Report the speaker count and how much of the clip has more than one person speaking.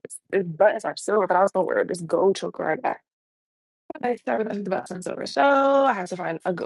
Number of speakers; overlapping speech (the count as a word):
one, no overlap